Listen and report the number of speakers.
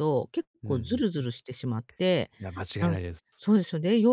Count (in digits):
2